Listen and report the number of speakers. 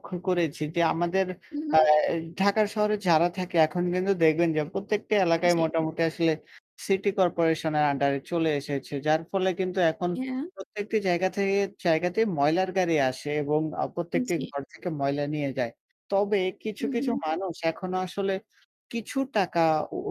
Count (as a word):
two